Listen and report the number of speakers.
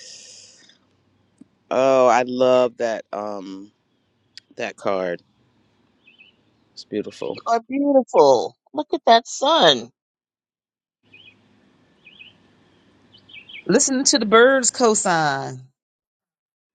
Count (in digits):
3